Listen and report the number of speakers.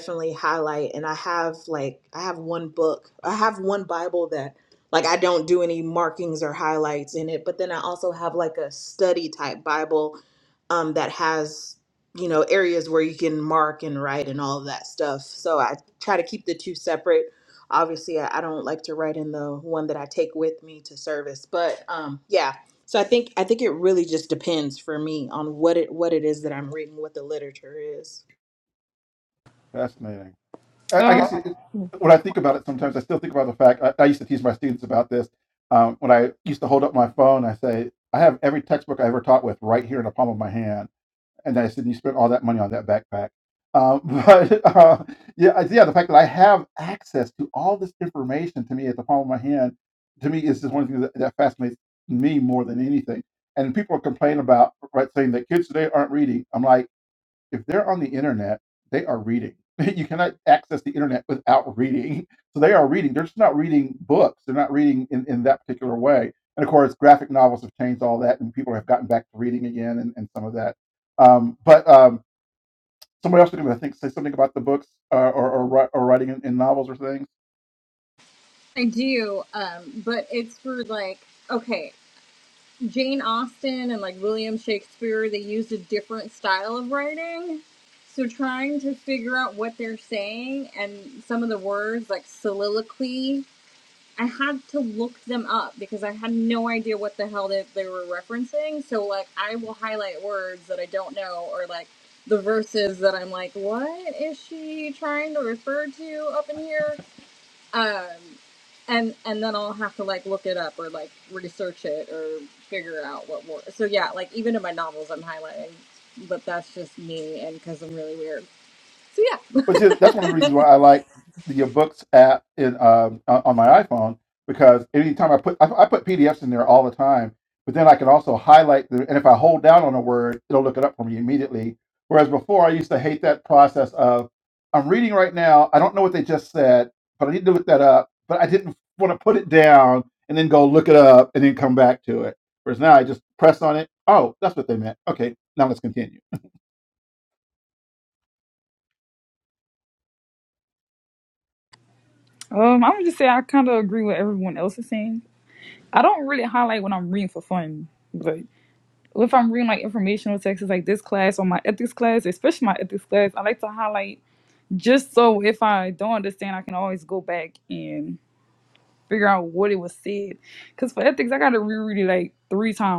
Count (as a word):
four